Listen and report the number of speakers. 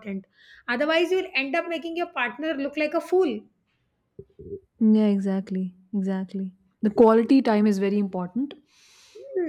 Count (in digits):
2